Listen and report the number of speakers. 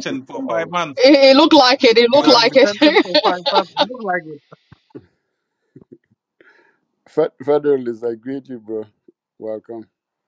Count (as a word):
three